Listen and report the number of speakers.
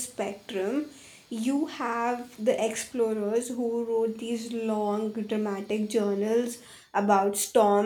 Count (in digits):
1